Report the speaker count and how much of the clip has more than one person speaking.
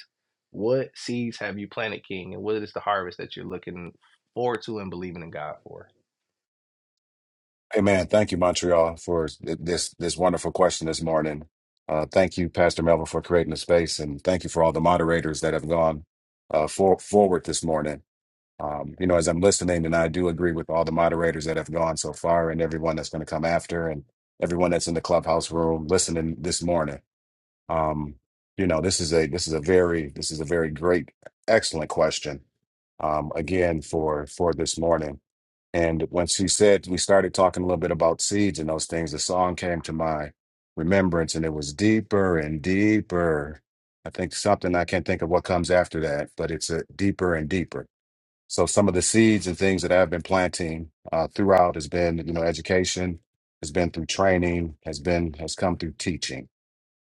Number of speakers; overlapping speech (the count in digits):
2, no overlap